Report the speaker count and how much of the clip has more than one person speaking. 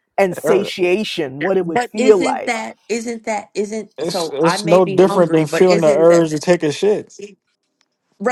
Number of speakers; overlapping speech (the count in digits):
3, about 42%